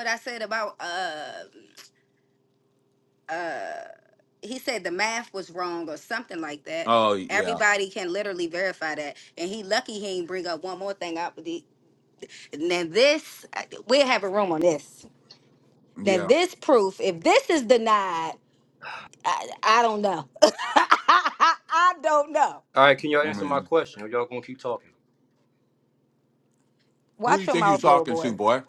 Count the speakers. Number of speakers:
3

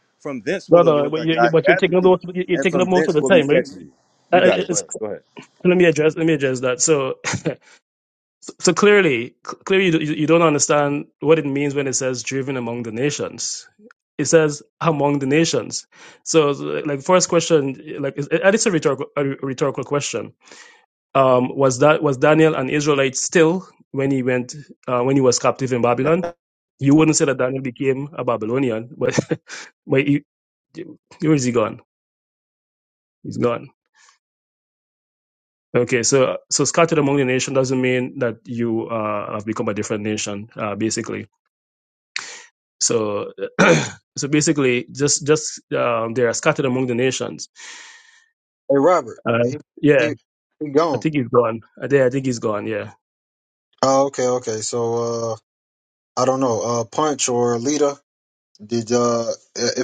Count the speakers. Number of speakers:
3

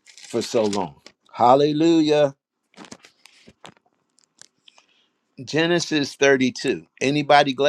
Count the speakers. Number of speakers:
1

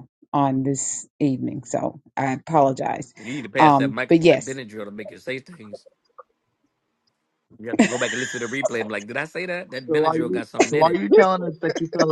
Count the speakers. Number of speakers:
3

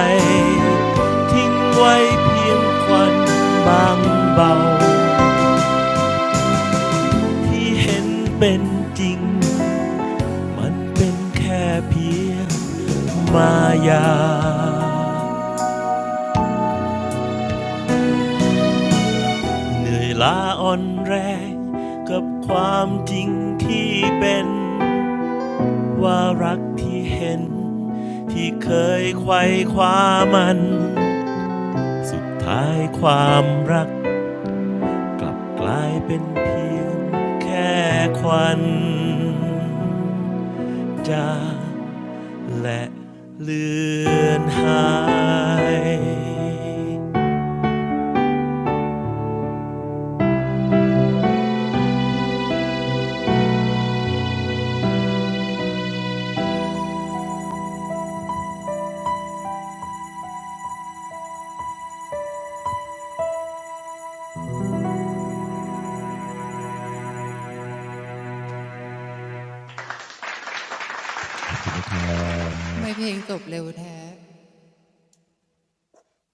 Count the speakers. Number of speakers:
2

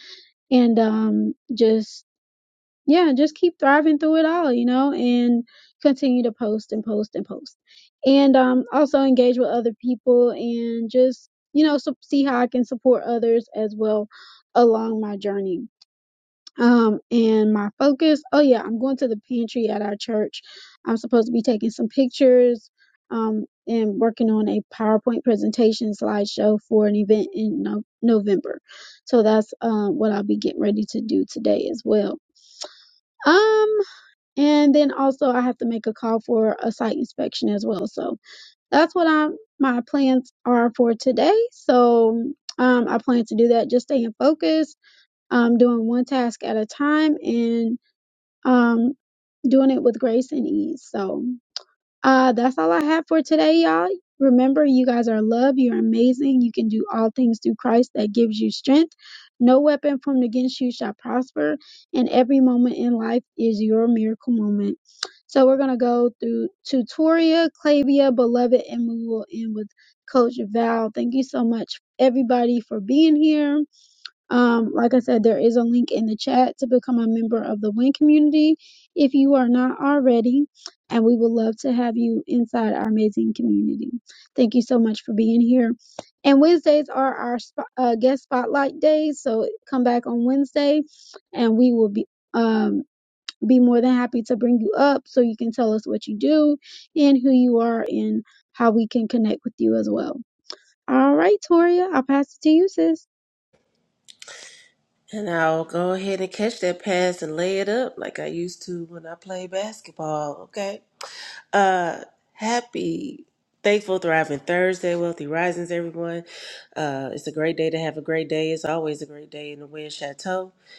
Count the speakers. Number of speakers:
2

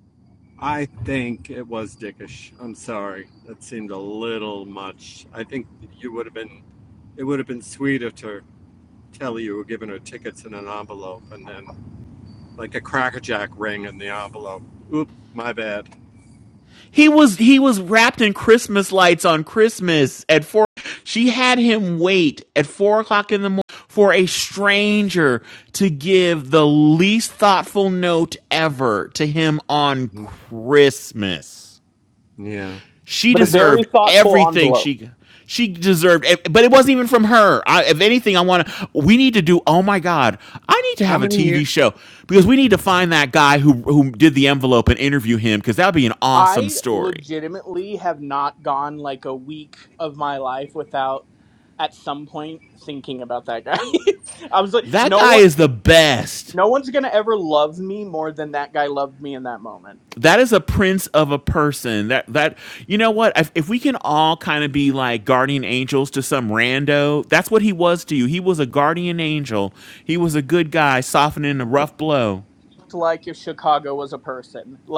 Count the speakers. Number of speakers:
3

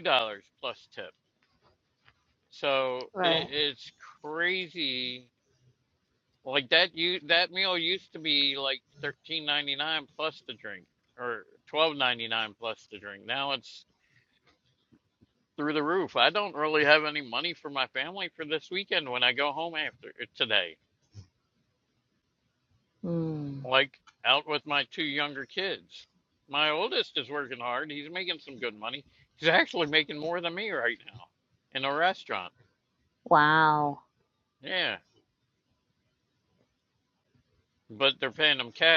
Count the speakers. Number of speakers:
2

